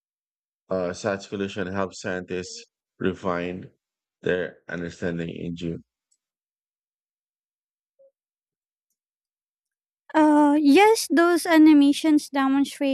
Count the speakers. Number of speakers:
two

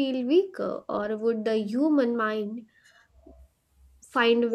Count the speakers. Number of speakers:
one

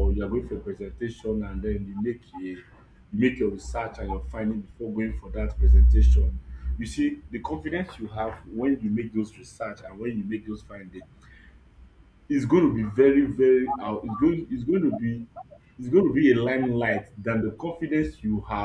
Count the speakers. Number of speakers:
one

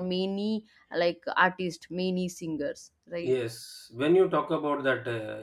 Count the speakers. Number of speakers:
two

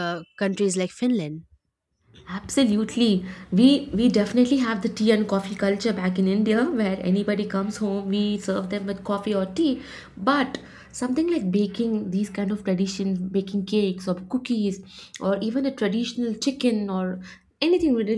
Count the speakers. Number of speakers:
two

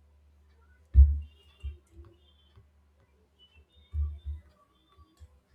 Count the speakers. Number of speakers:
zero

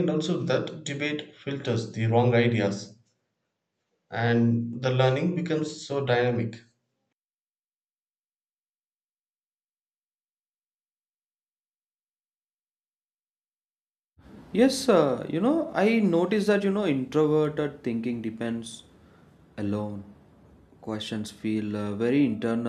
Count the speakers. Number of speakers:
two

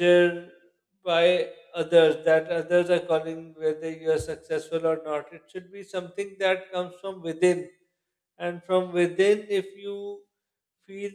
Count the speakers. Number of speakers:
one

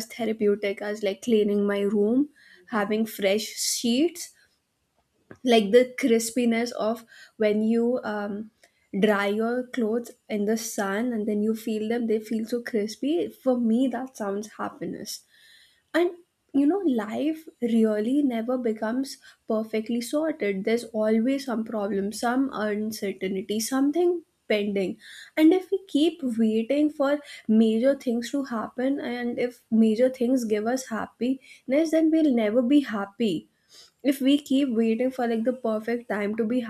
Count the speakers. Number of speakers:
one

